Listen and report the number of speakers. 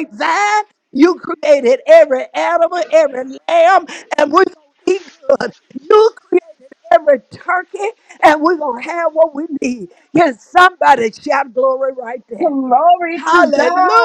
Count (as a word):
two